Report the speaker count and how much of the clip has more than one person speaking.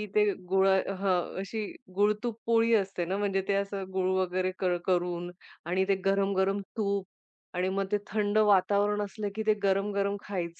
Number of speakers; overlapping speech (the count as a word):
one, no overlap